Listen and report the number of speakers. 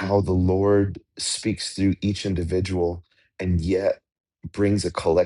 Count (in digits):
1